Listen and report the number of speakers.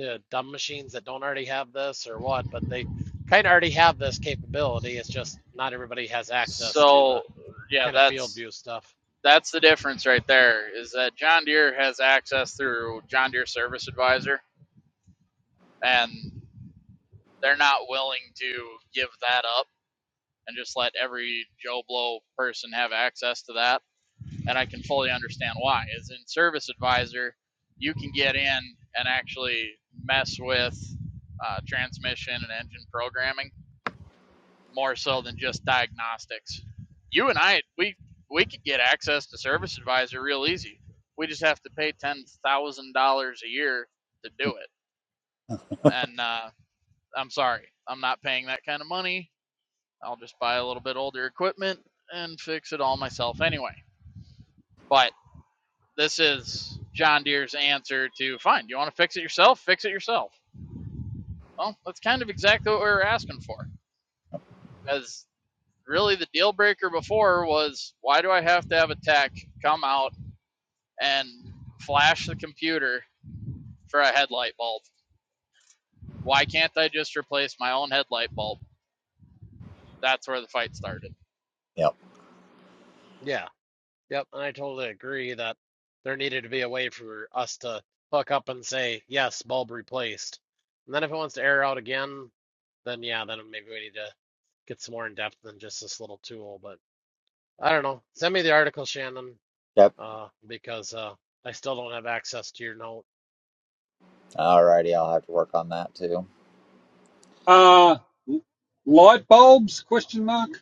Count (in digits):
4